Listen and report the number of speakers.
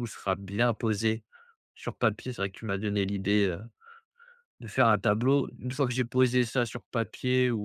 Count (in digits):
1